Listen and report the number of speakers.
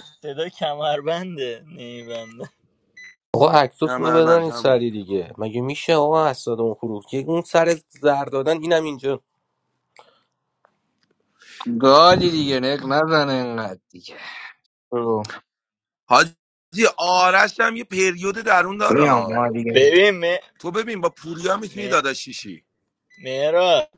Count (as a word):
four